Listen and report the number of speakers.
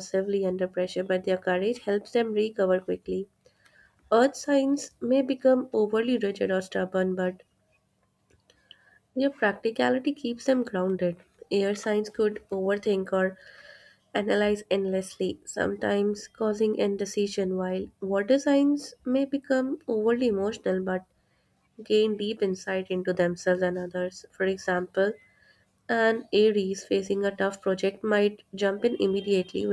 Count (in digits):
1